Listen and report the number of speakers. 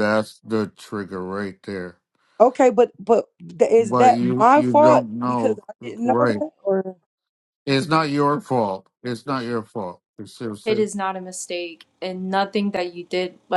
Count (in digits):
3